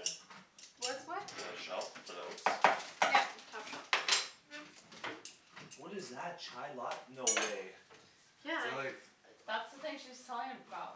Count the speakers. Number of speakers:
four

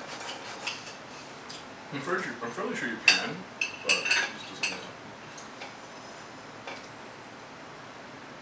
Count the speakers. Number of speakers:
one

